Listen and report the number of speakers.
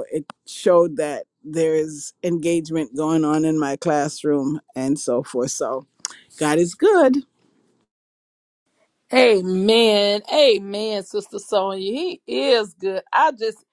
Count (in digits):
2